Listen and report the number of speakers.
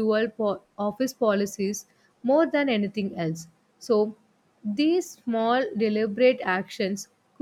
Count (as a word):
one